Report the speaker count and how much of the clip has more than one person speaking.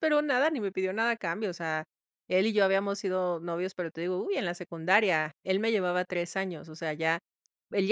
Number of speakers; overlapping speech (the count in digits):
1, no overlap